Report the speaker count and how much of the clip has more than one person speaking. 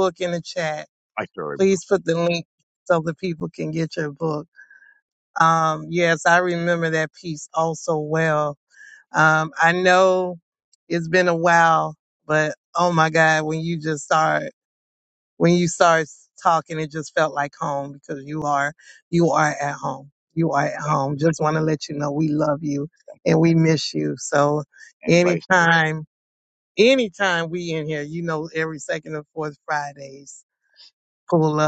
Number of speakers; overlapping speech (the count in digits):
2, about 4%